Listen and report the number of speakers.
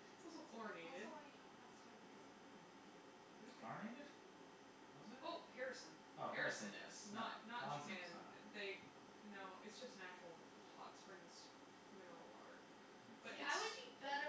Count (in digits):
3